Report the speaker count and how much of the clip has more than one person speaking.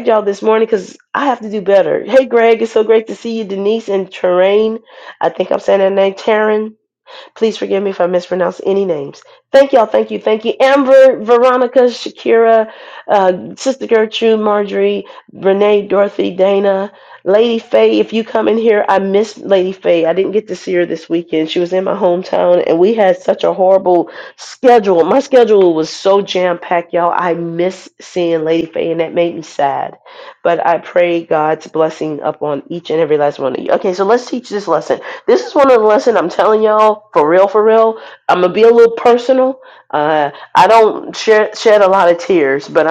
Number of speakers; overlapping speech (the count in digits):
1, no overlap